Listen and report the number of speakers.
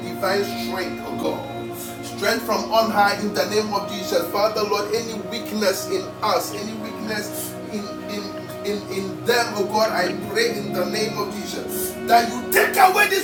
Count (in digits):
1